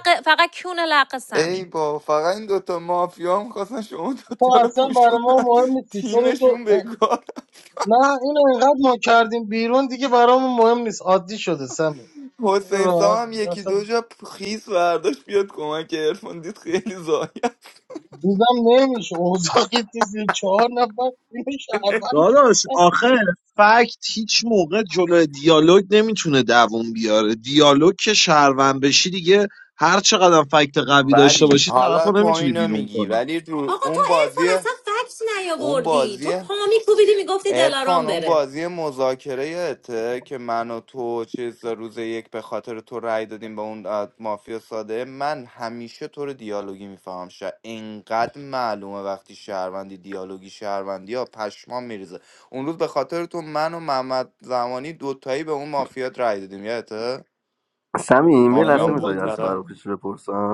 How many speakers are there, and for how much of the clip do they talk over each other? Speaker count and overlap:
five, about 15%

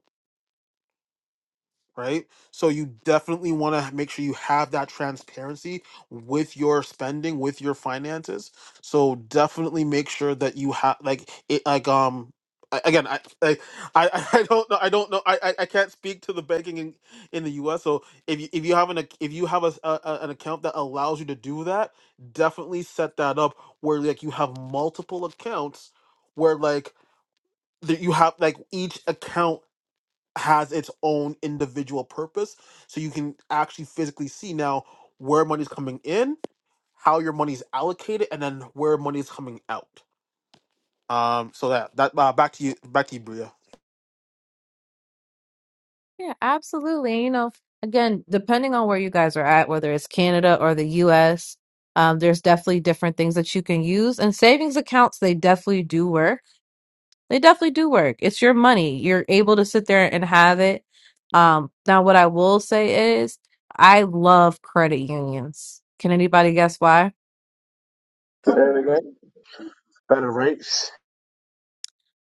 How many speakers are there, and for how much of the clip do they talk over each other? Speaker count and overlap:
three, no overlap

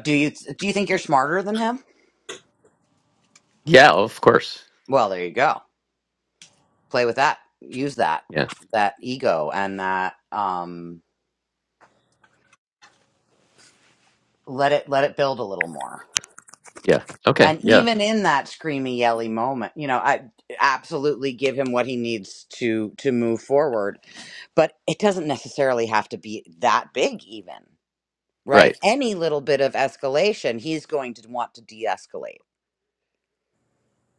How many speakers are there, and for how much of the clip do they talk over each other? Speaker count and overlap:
two, about 2%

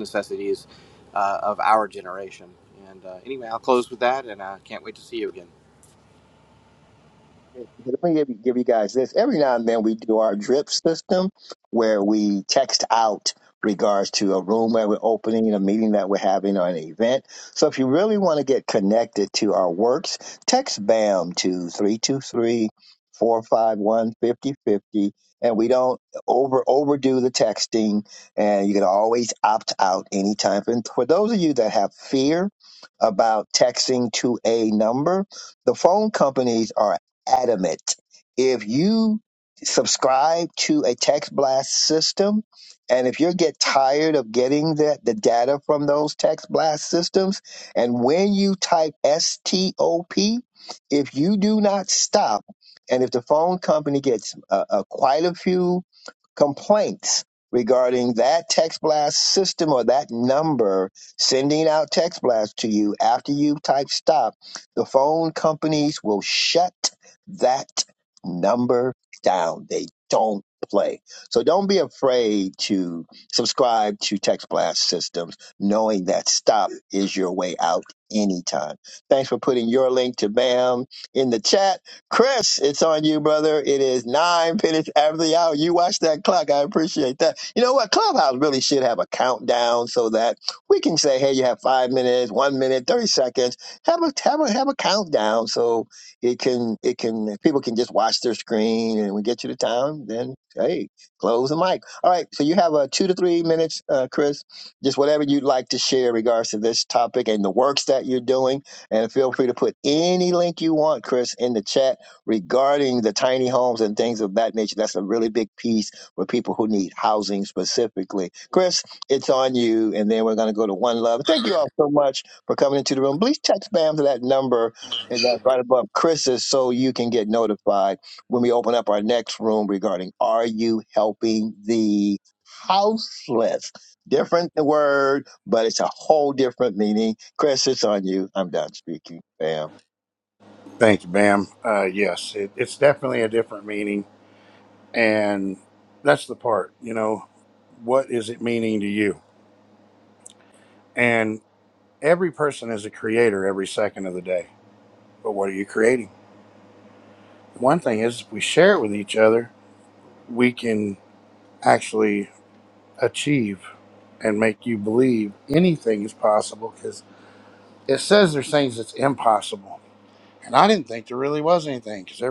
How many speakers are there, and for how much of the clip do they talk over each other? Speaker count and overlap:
three, no overlap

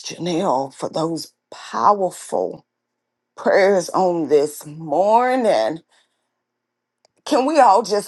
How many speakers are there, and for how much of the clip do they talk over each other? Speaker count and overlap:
one, no overlap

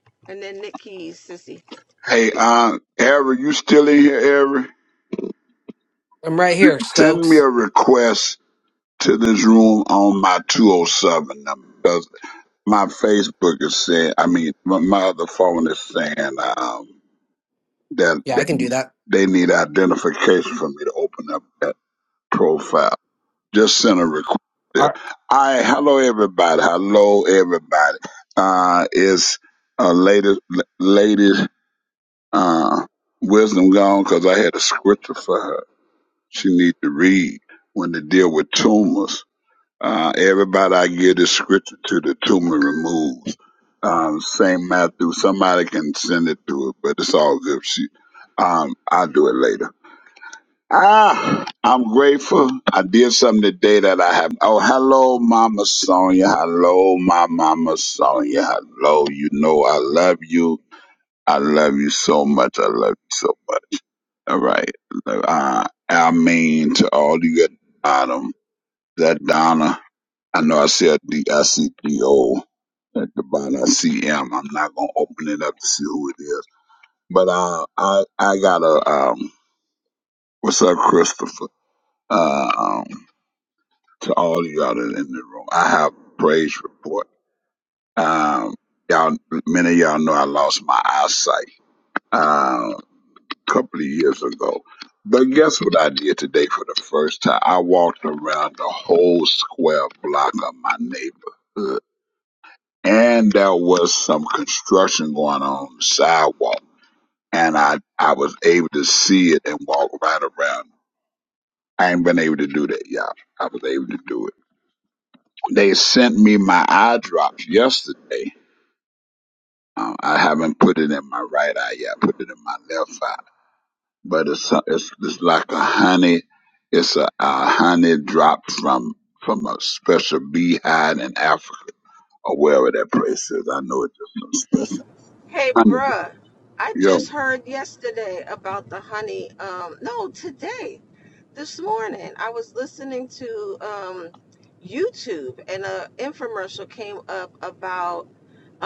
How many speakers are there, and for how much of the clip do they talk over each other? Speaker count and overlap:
three, about 1%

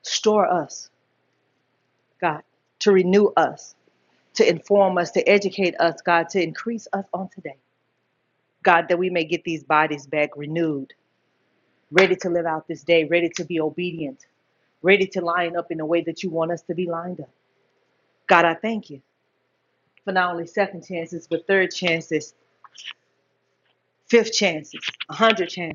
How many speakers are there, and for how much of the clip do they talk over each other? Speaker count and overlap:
one, no overlap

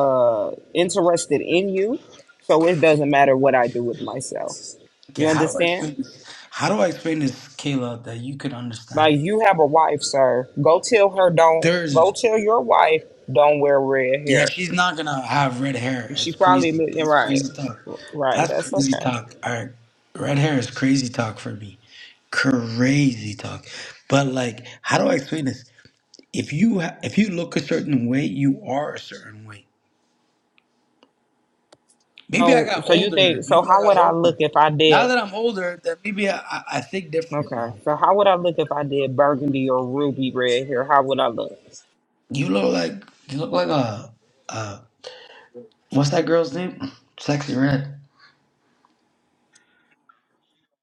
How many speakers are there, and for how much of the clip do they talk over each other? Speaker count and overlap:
two, about 13%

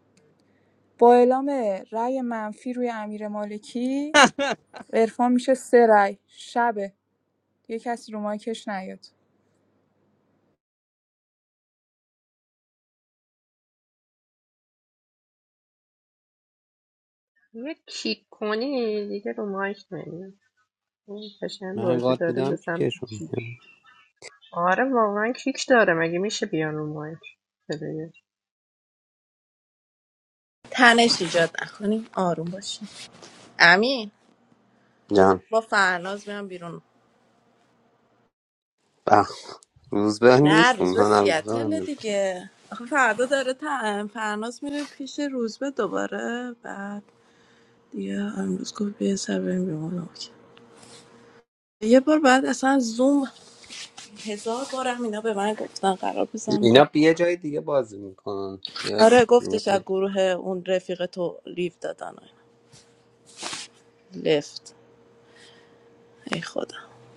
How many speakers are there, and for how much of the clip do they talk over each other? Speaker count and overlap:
four, about 4%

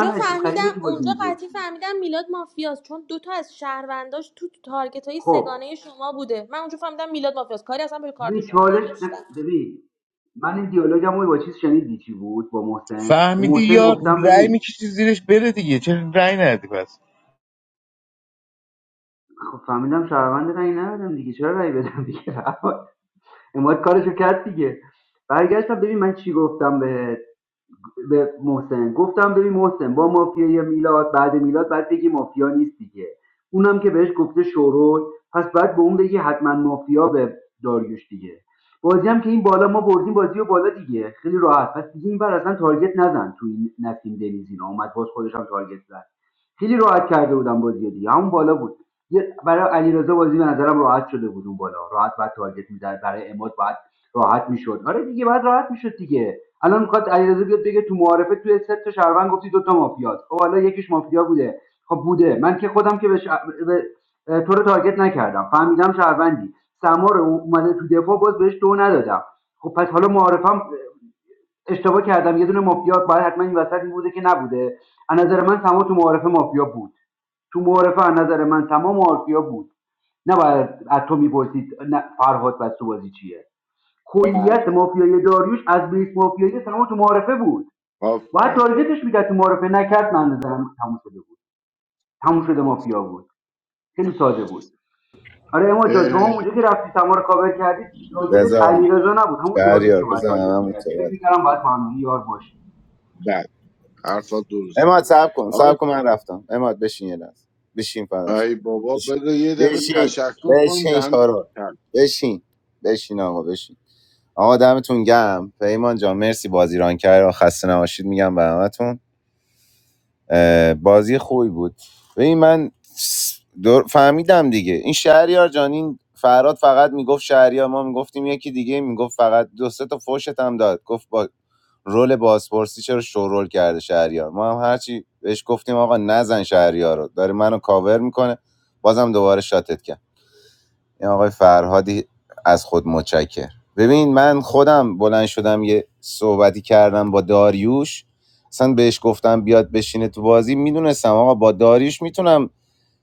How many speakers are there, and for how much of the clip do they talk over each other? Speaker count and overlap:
five, about 6%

